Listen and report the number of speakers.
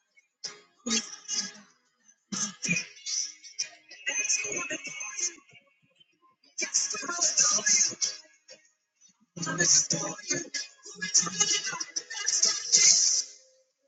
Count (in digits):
0